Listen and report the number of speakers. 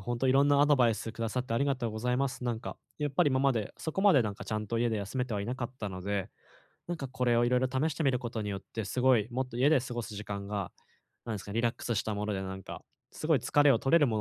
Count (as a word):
one